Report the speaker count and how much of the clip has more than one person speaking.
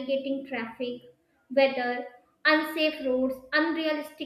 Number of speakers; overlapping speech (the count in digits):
1, no overlap